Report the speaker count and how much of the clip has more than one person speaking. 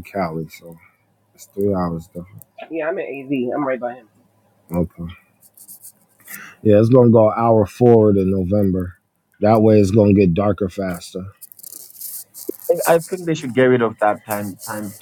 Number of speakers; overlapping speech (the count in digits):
3, no overlap